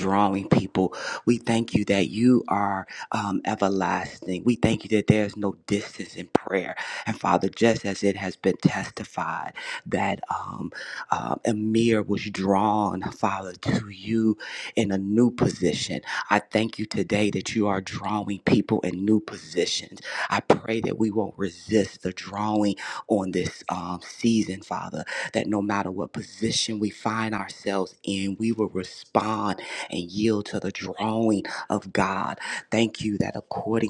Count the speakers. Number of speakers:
1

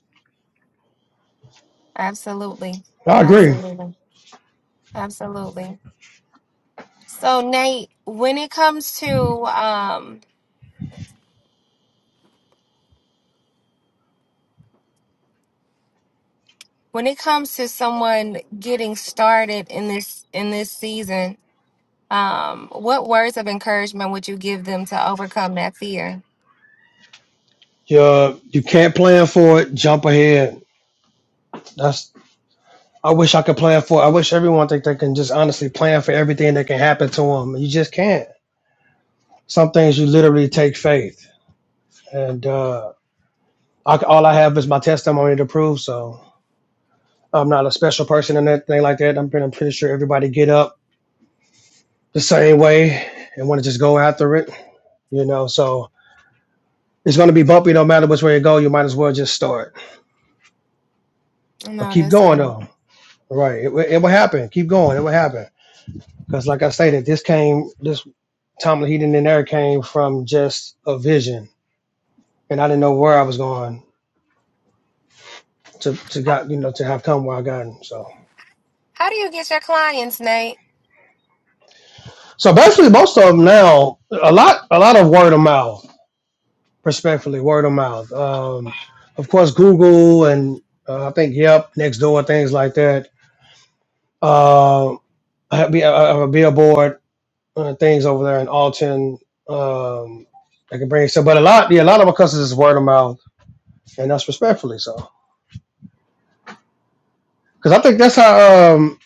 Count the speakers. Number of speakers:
2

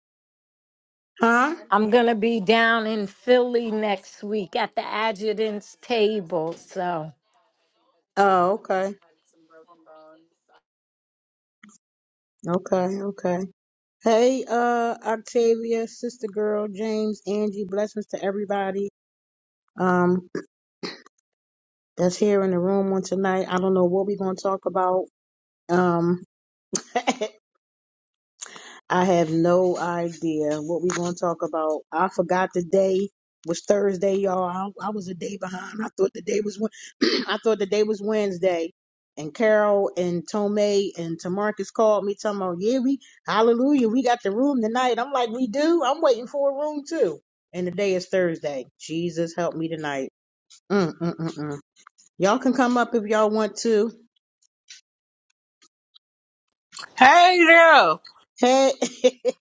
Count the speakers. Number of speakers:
3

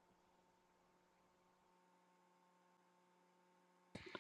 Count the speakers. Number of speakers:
0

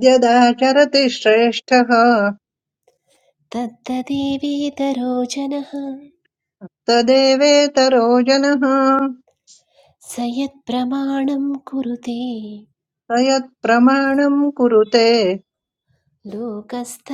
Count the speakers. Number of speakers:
2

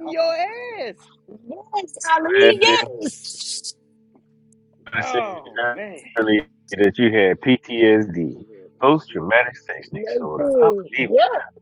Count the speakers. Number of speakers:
3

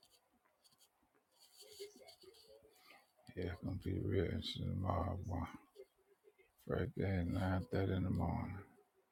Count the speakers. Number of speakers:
1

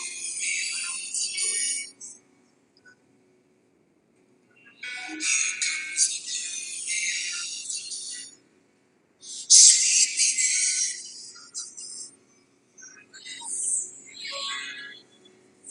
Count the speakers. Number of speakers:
0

